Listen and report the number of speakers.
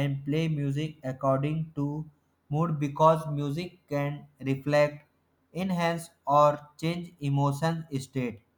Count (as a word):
one